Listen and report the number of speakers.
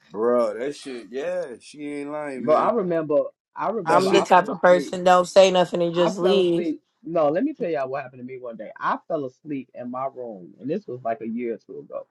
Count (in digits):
3